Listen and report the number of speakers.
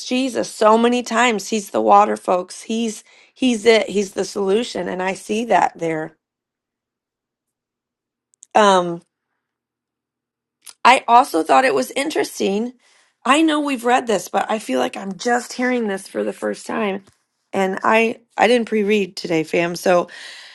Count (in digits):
1